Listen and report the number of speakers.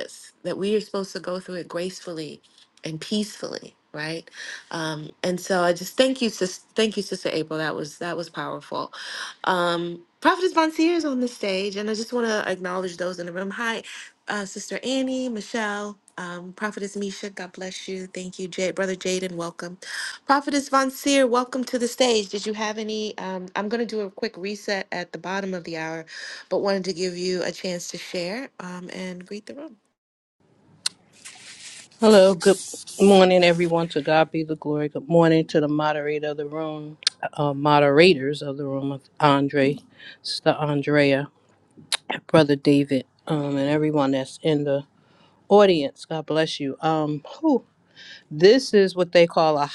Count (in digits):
2